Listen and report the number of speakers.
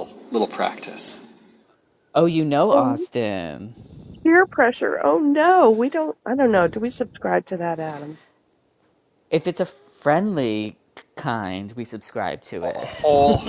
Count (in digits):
3